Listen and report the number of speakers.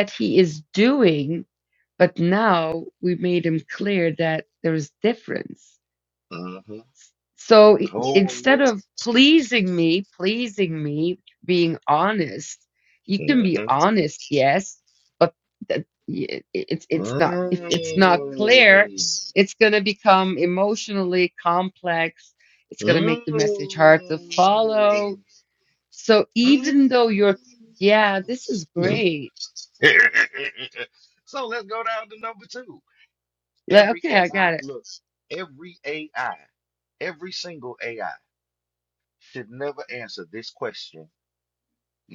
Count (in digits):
2